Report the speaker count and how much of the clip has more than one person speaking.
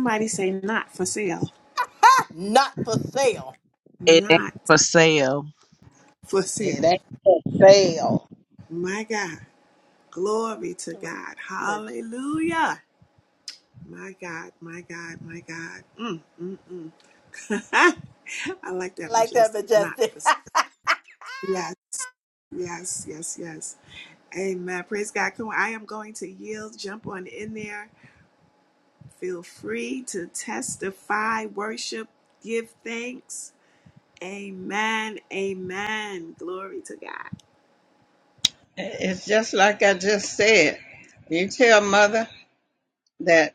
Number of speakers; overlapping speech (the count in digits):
5, about 4%